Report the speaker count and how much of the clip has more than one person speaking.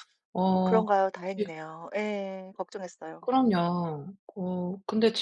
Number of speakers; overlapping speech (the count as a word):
two, about 6%